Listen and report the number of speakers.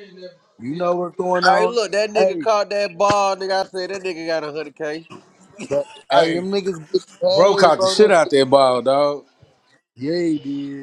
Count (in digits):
3